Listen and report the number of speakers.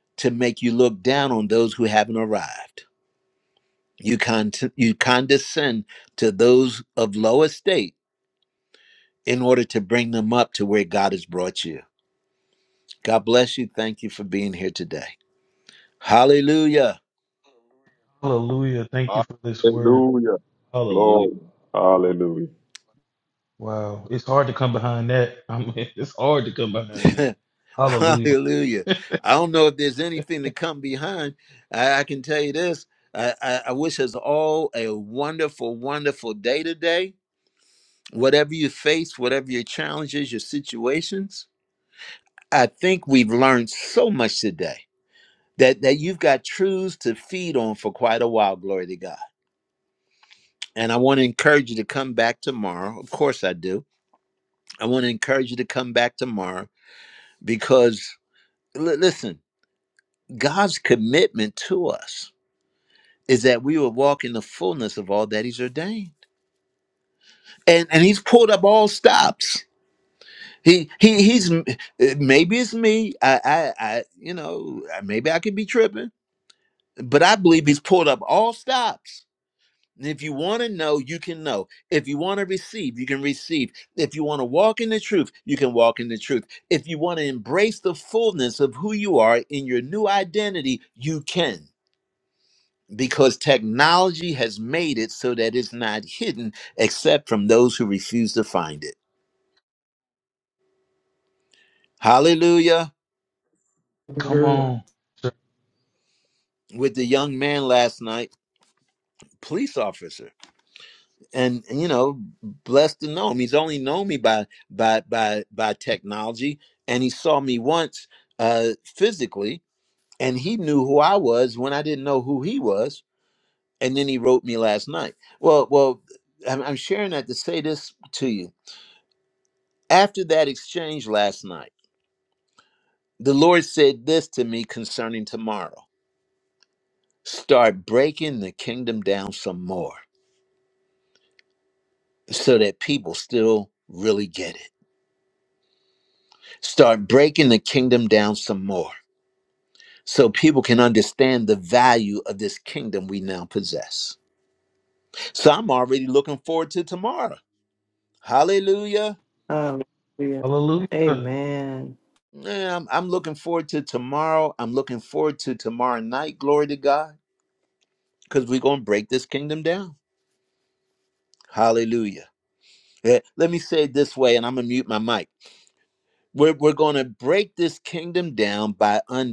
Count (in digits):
4